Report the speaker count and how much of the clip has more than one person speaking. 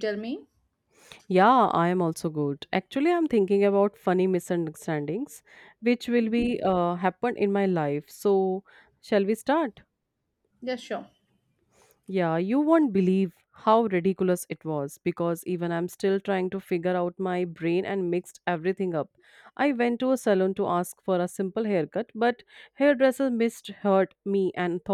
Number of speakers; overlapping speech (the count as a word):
two, about 1%